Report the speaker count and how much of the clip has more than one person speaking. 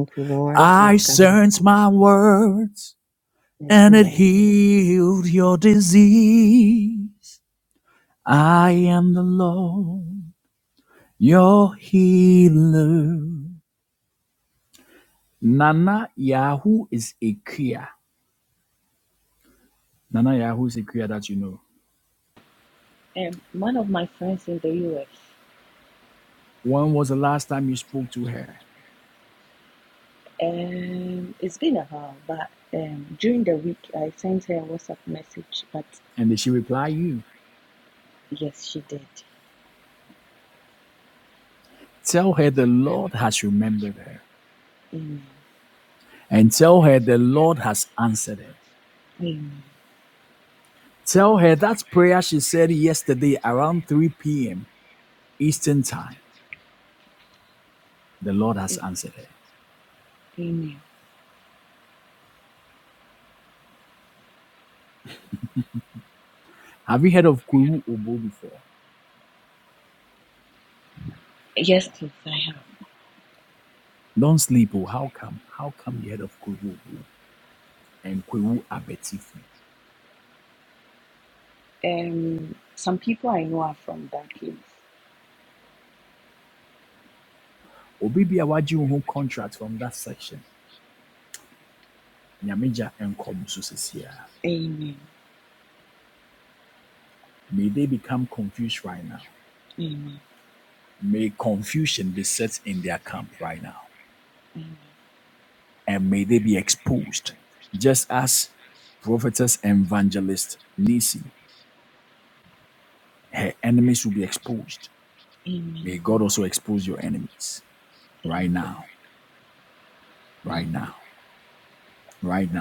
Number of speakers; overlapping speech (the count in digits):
3, about 1%